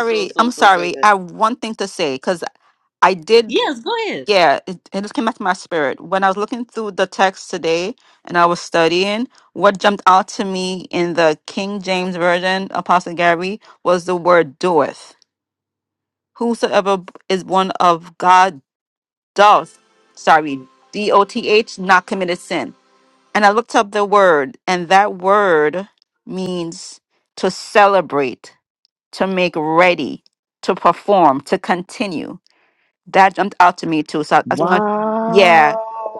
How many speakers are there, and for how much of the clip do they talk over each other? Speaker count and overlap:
3, about 5%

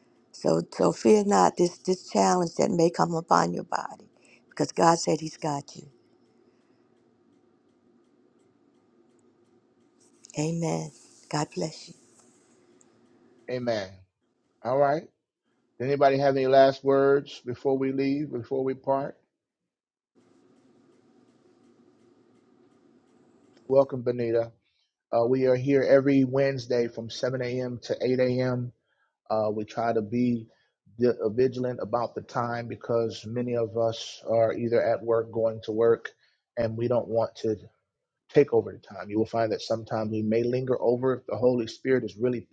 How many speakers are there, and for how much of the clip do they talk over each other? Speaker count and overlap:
2, no overlap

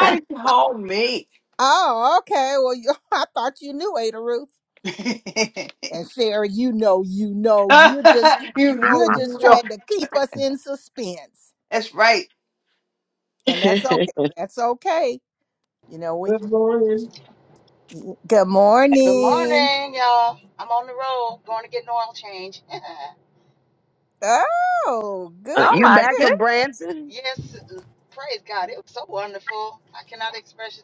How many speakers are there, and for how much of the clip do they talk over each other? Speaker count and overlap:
4, about 7%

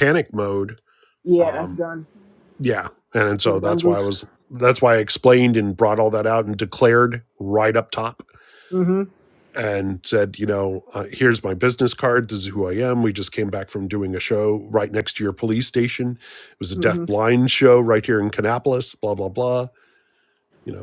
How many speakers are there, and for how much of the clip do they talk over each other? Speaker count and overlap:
2, about 6%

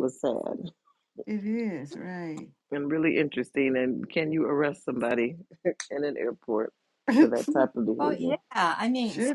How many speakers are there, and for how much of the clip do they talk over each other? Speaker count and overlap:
3, about 7%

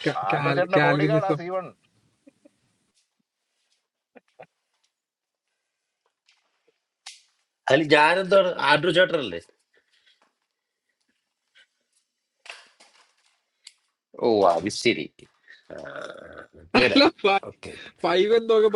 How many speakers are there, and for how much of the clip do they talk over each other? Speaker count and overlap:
3, about 5%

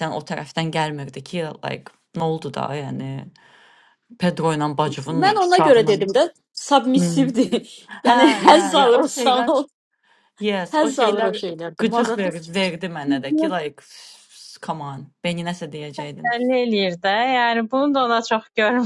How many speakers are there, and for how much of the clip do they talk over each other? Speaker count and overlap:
3, about 21%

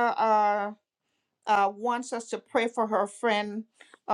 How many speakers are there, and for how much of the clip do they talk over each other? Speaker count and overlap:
1, no overlap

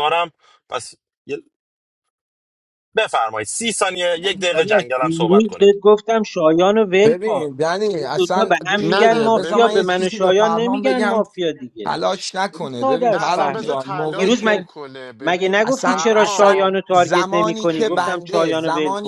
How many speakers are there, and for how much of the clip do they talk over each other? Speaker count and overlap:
4, about 58%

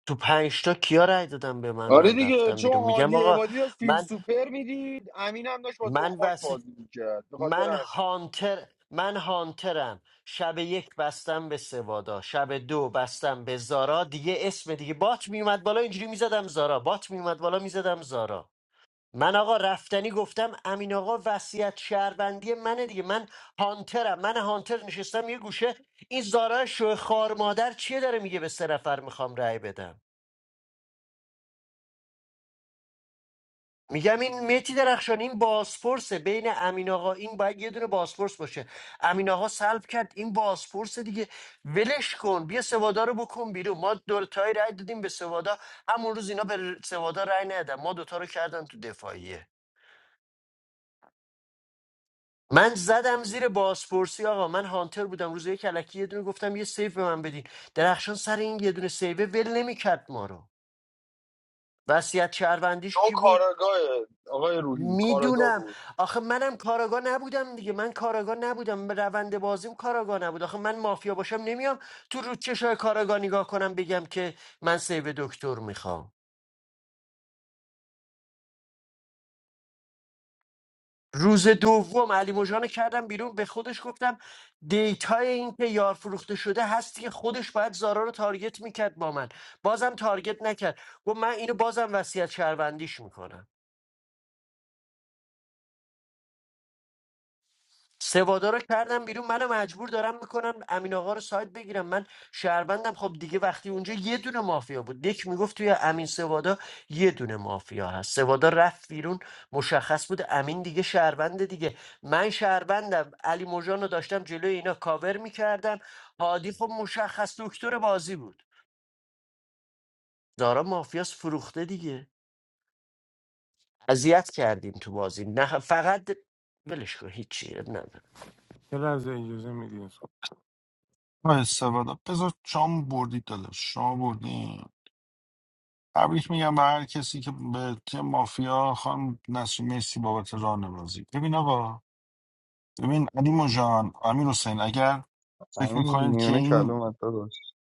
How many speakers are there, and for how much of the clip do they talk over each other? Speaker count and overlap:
5, about 4%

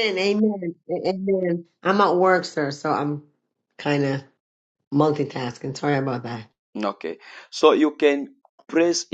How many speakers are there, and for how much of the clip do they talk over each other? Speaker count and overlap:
2, no overlap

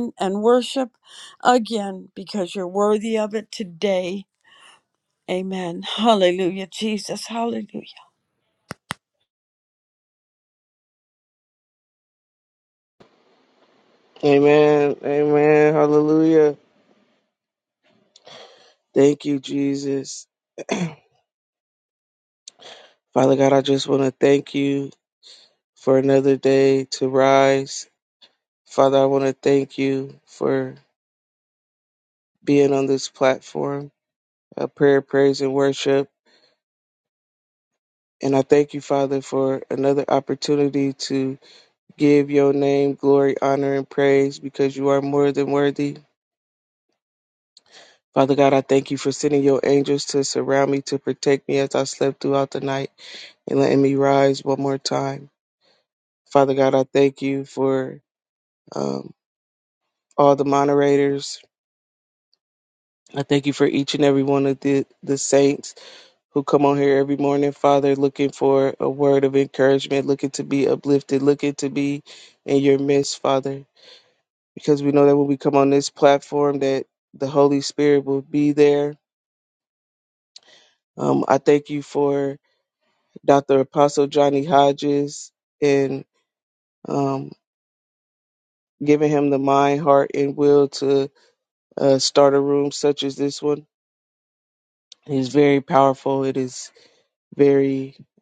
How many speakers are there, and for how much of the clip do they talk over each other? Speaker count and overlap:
2, no overlap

